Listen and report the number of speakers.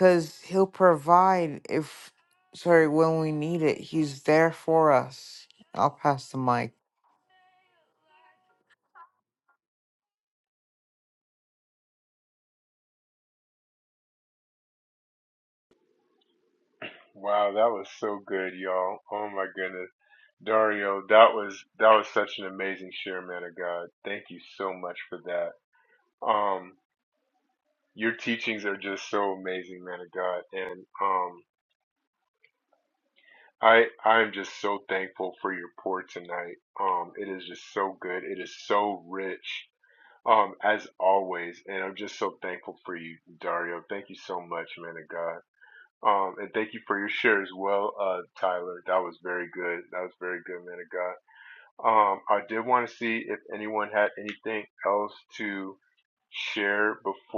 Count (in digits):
2